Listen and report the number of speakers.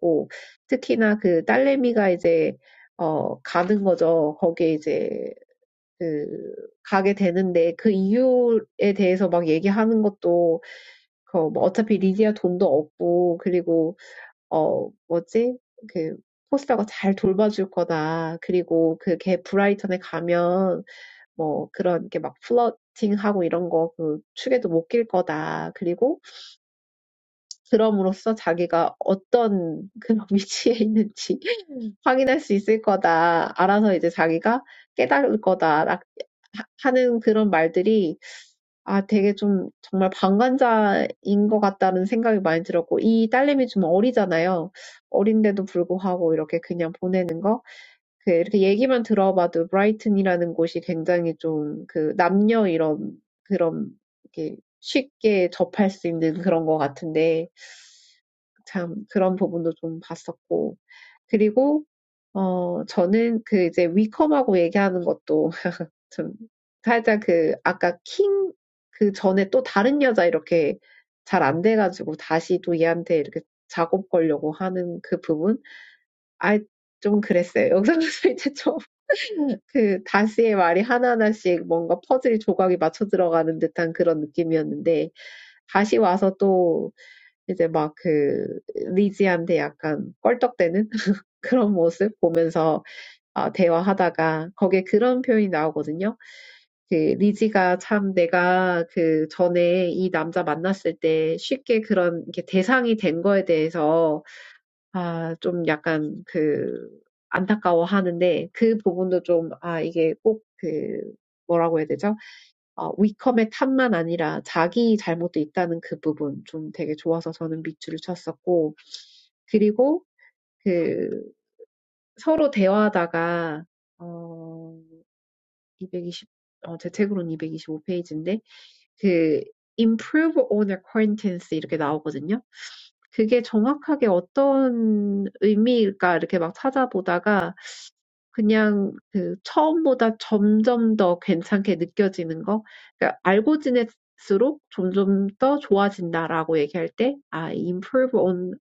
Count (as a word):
one